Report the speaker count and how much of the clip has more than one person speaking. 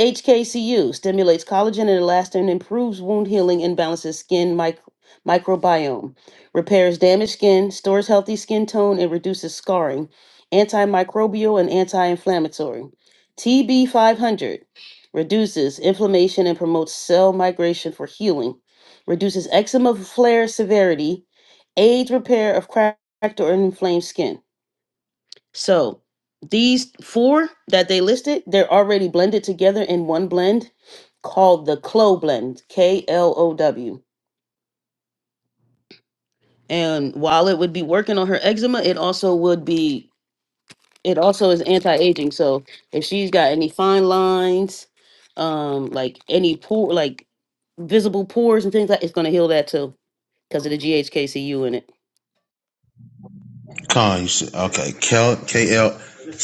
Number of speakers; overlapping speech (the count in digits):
2, no overlap